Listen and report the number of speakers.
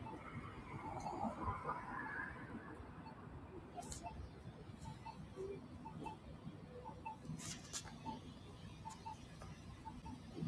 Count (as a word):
zero